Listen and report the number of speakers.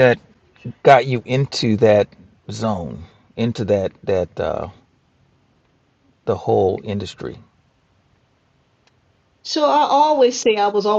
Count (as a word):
two